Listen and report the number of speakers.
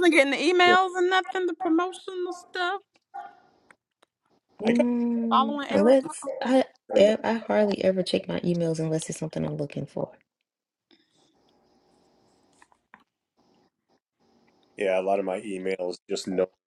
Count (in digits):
3